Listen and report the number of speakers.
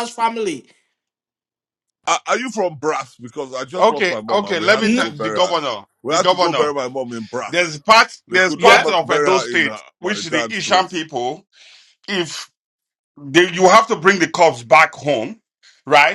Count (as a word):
three